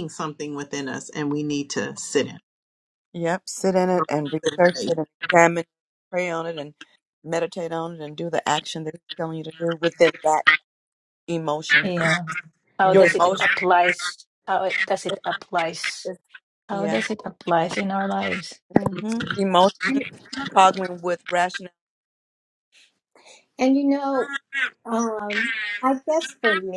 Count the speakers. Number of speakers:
4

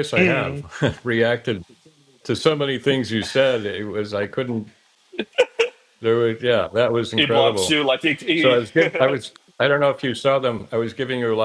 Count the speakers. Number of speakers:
2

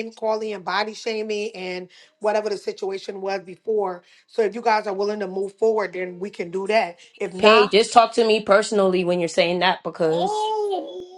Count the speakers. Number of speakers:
2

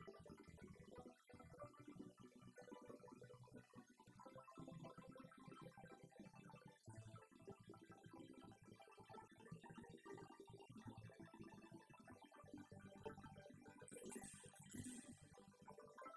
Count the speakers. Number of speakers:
0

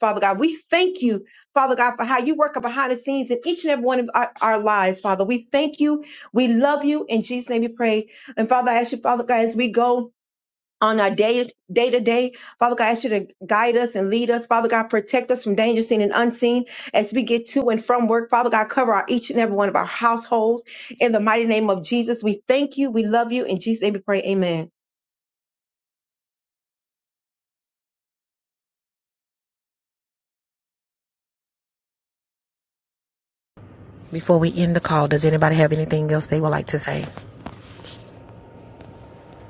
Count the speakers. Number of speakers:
2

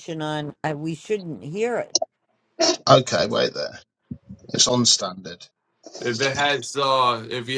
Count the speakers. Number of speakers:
3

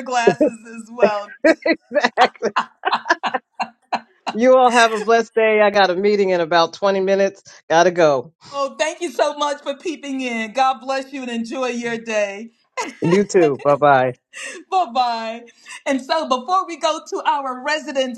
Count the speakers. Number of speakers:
2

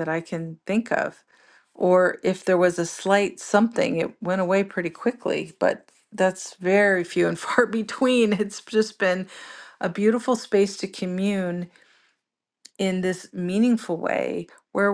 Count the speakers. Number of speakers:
1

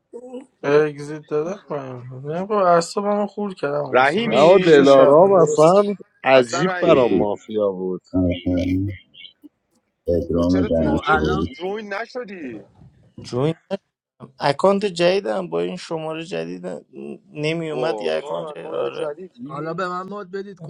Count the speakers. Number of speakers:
6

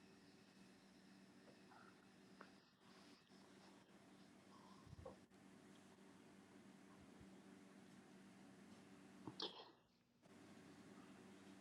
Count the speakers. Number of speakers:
0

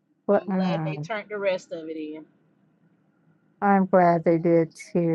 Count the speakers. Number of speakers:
2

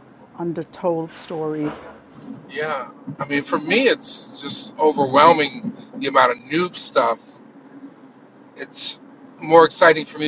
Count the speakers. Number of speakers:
2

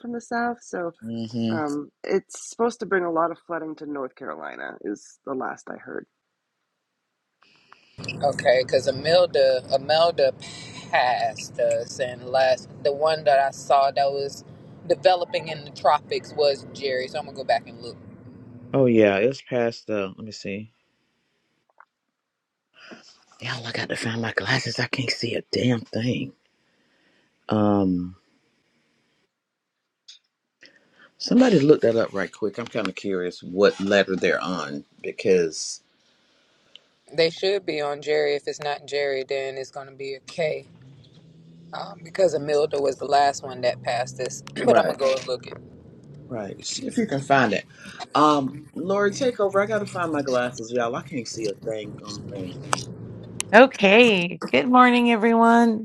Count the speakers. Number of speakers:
4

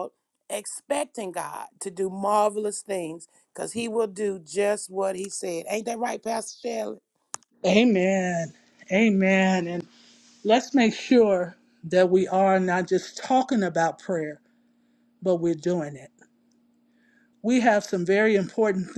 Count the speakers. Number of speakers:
2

